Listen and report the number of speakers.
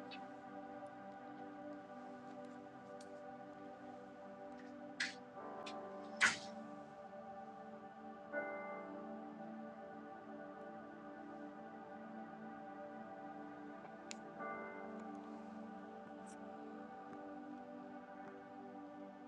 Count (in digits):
0